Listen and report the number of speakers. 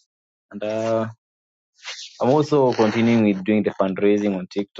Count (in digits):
1